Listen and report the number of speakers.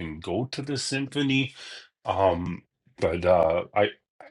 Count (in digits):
1